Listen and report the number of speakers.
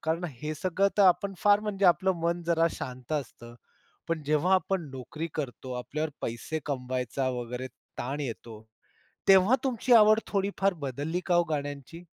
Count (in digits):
1